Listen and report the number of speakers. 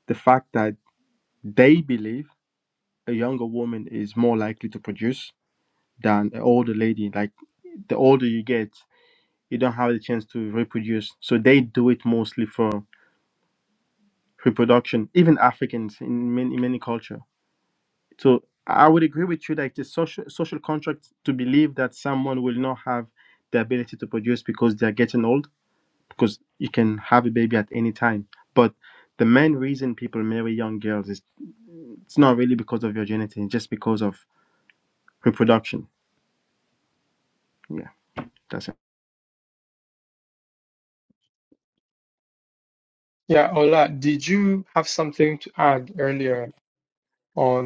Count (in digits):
2